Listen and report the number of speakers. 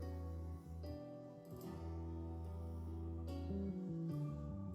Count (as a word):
zero